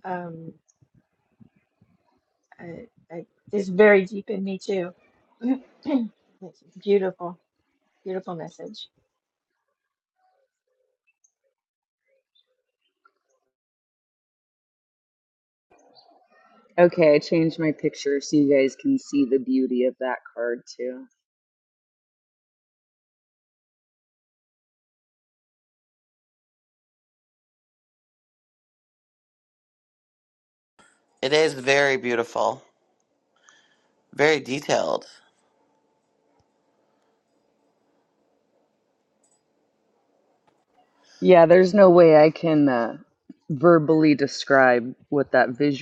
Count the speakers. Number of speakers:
3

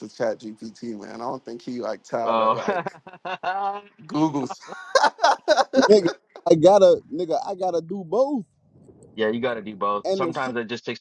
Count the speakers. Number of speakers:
3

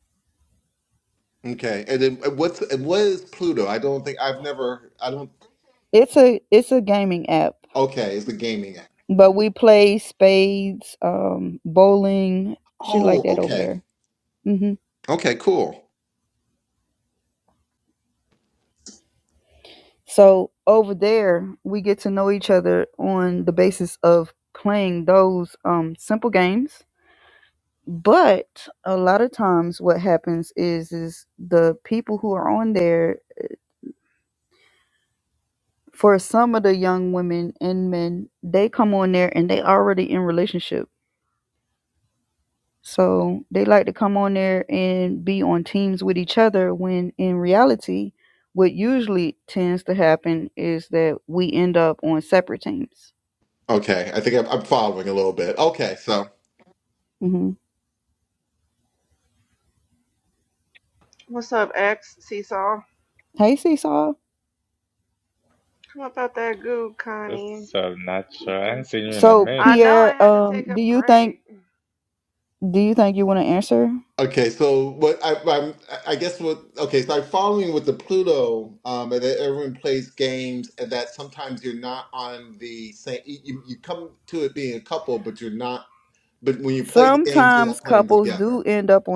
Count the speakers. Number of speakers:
4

